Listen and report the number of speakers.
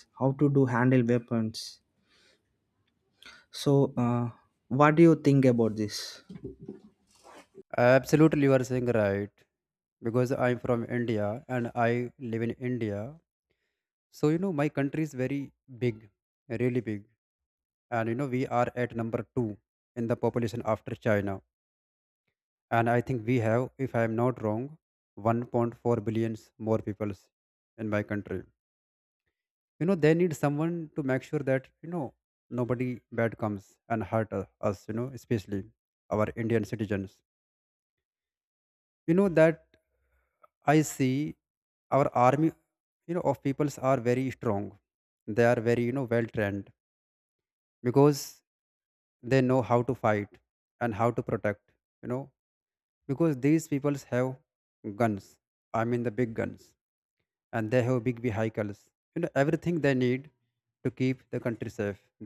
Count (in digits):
2